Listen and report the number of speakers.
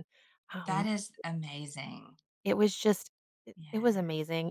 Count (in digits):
2